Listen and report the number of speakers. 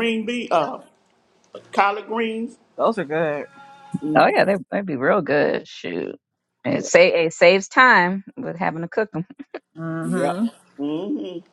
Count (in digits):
3